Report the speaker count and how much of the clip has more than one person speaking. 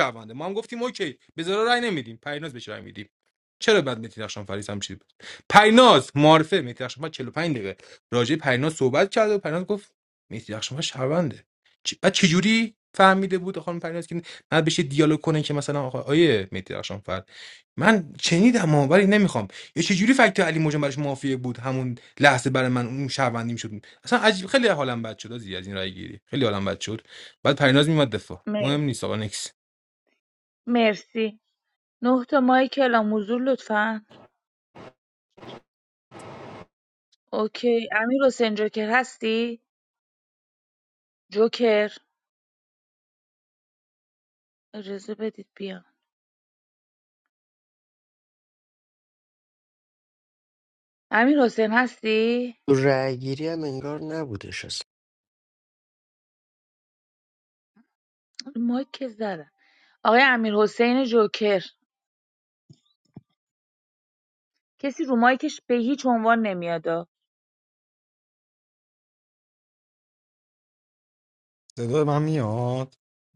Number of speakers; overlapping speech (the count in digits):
4, under 1%